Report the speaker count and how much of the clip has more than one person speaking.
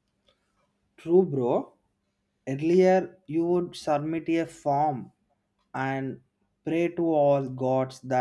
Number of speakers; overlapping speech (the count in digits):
1, no overlap